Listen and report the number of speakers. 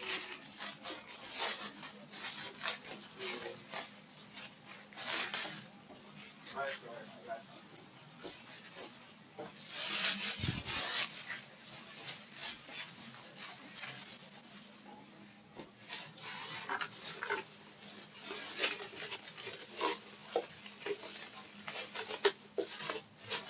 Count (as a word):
zero